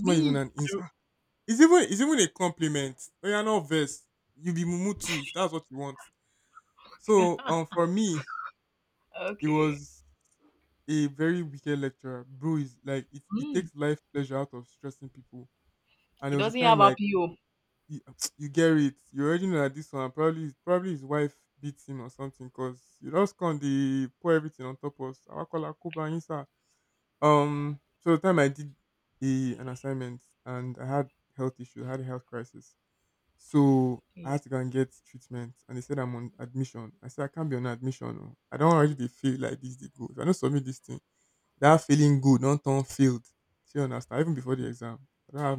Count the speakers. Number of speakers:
2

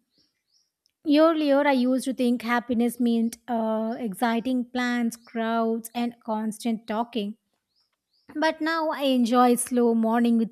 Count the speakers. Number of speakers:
1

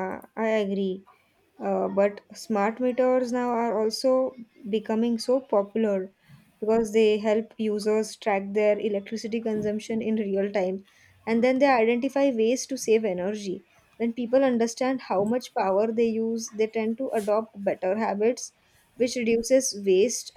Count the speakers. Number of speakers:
1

